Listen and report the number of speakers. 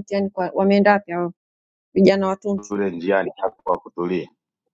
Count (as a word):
two